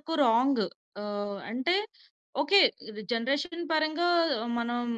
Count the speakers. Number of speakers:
one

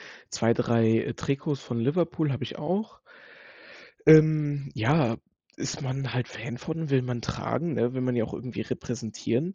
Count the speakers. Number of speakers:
one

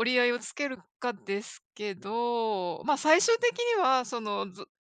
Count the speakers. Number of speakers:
one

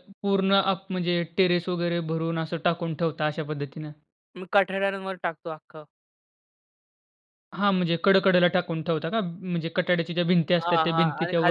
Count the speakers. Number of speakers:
two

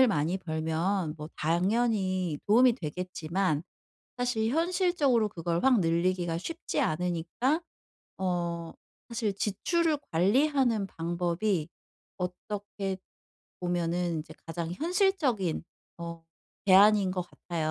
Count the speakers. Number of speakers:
one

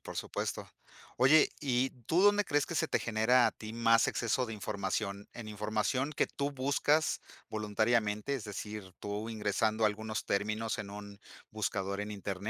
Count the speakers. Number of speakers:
one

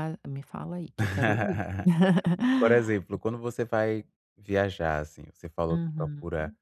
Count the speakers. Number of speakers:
two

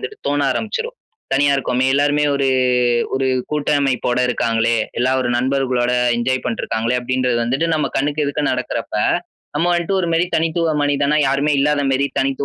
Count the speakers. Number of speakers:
one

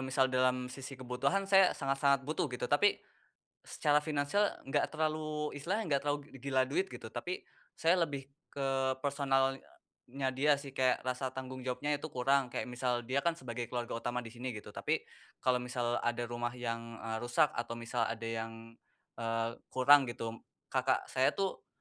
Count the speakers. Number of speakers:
one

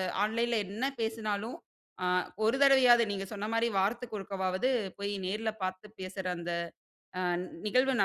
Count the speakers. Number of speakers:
one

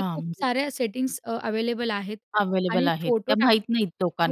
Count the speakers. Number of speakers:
two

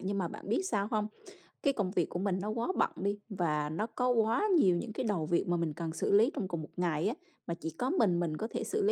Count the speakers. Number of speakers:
one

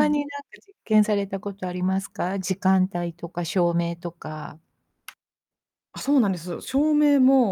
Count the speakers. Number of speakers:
two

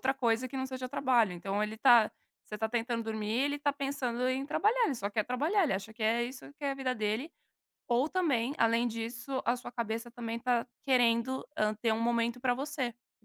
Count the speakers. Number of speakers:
one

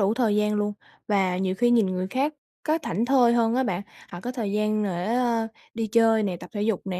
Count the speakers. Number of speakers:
one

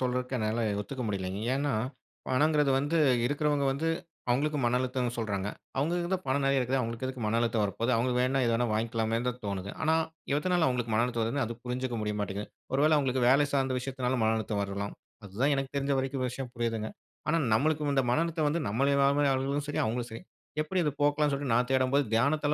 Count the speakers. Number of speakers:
one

